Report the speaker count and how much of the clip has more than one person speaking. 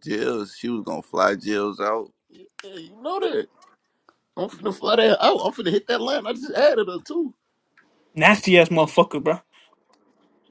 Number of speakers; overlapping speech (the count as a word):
three, no overlap